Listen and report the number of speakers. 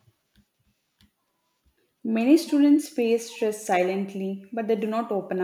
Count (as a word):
one